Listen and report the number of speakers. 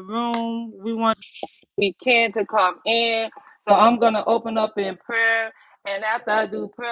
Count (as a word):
one